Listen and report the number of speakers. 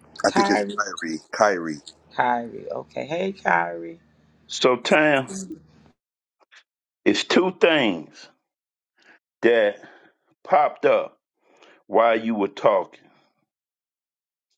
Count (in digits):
3